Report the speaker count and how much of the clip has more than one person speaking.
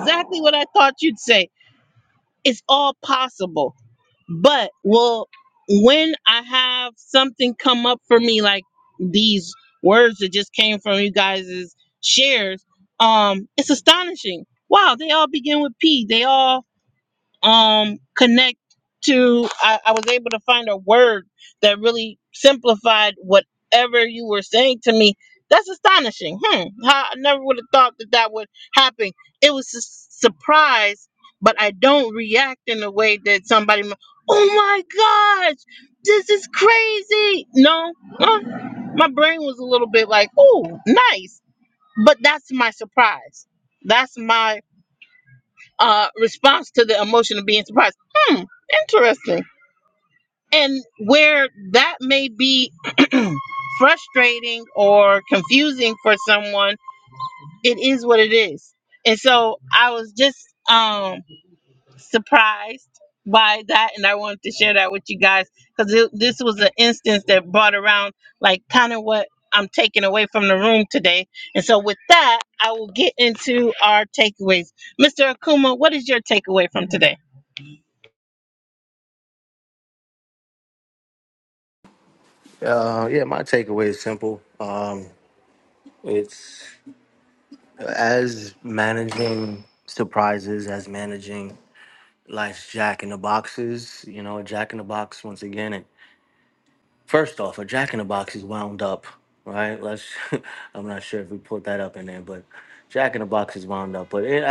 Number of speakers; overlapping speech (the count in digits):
2, no overlap